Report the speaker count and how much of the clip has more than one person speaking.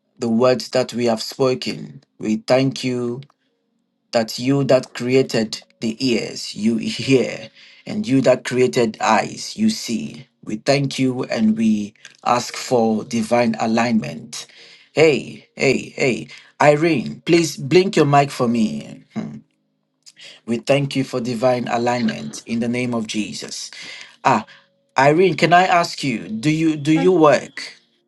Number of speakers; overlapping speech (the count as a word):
one, no overlap